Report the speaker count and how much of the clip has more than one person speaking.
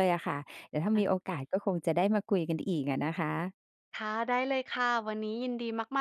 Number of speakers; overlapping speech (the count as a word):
two, about 1%